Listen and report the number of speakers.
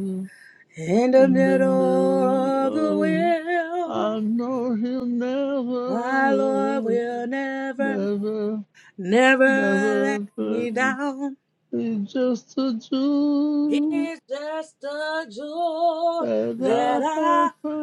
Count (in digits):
2